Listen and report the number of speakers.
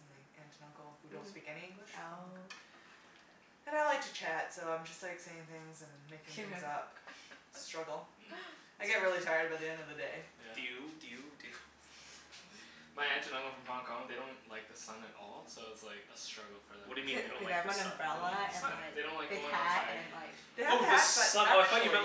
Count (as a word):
four